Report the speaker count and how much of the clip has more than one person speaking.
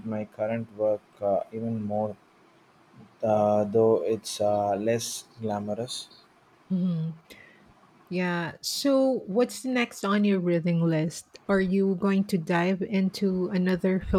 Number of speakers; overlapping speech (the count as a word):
two, no overlap